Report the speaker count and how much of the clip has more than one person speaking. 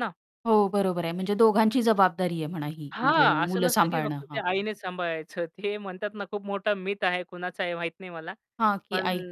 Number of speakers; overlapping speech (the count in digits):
2, about 18%